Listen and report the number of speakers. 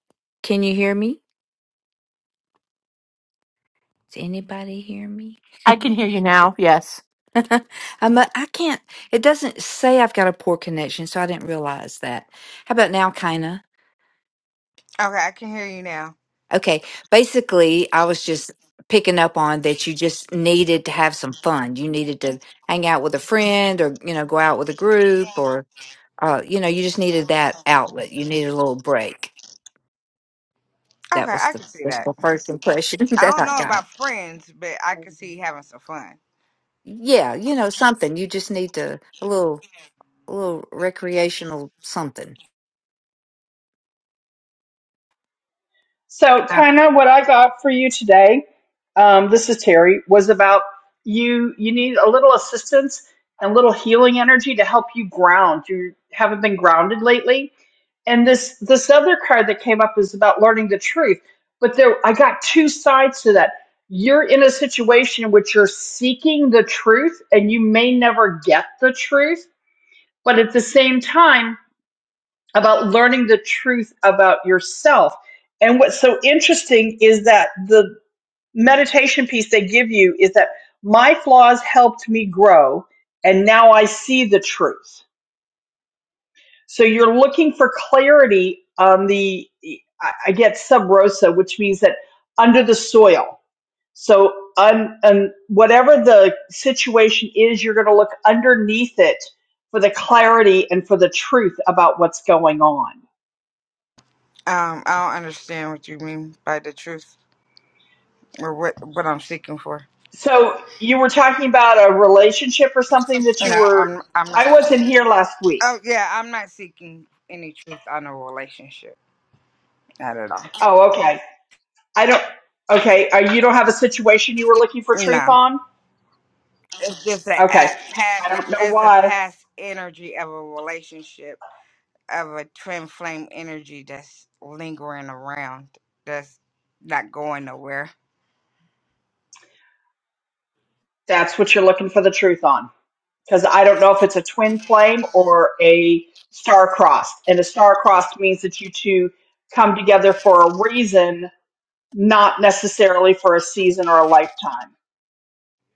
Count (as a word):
four